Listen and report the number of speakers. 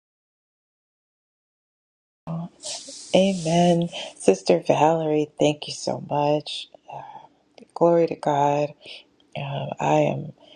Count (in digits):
1